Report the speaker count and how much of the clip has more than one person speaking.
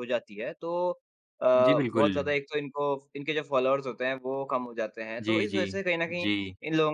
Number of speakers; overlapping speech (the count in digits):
2, about 14%